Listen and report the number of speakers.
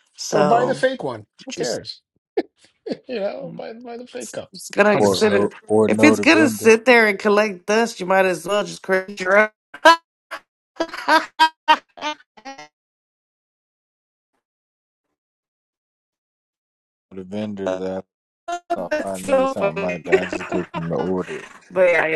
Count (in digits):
3